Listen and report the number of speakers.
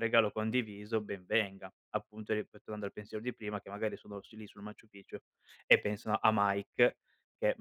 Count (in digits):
1